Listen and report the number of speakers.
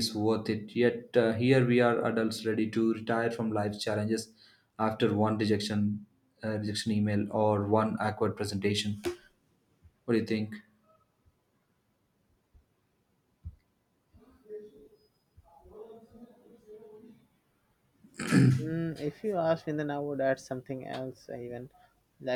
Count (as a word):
two